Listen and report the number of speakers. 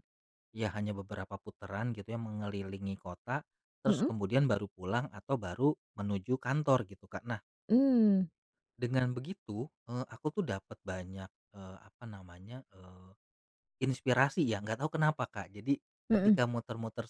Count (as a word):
two